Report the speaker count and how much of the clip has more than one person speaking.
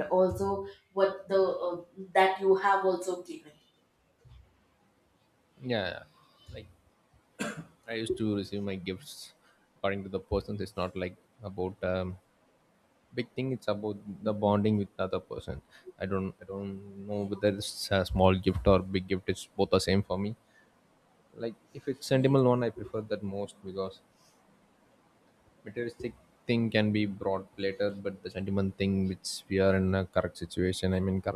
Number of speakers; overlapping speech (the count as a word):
two, about 1%